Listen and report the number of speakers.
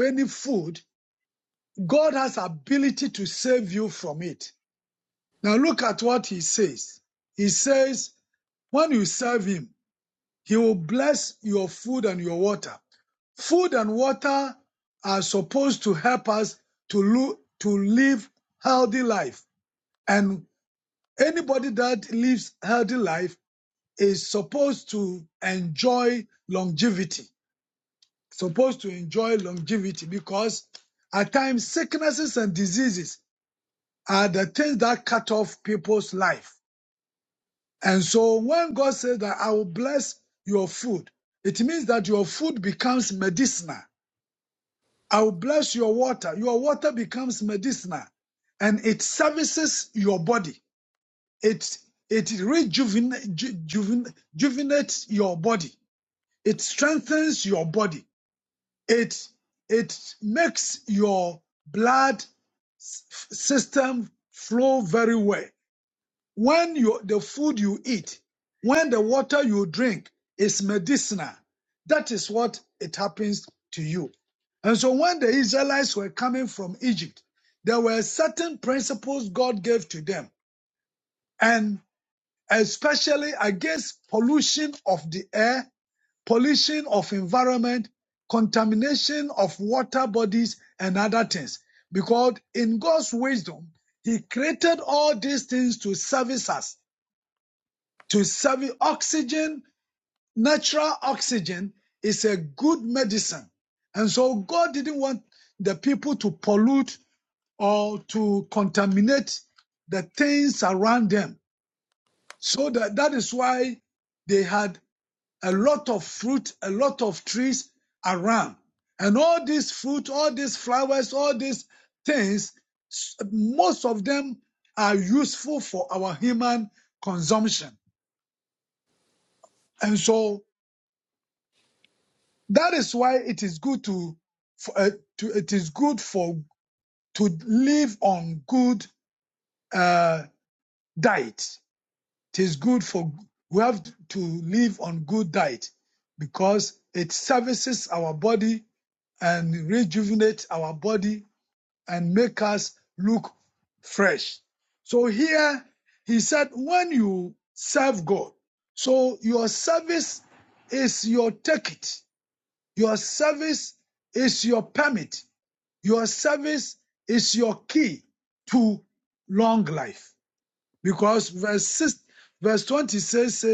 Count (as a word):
one